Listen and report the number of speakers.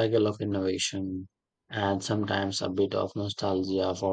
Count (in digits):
1